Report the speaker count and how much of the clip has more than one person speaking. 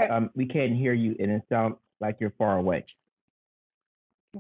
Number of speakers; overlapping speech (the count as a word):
one, no overlap